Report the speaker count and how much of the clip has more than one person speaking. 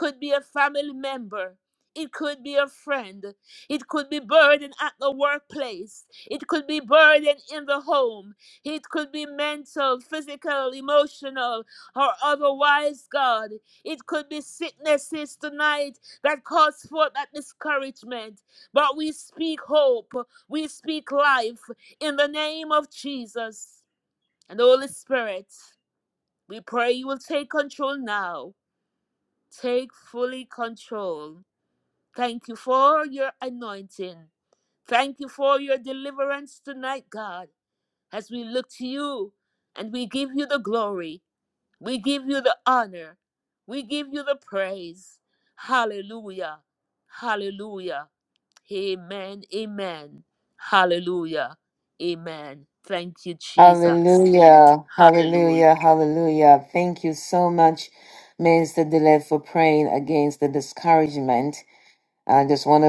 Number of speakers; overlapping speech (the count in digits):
2, about 1%